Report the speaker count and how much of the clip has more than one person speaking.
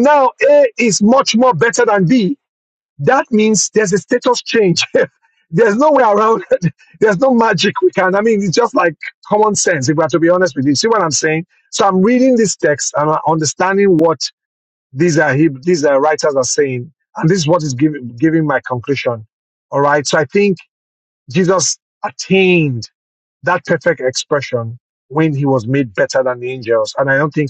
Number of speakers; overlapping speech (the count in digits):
1, no overlap